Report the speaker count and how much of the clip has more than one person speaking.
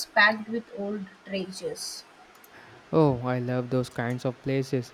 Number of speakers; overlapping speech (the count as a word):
two, no overlap